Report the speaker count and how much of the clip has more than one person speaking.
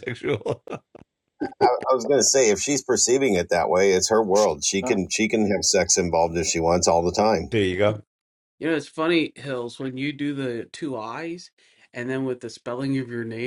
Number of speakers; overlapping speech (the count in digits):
3, about 1%